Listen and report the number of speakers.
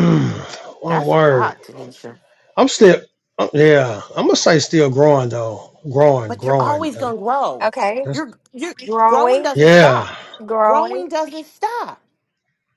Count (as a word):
three